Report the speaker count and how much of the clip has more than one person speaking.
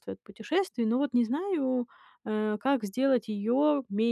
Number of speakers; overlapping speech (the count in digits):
1, no overlap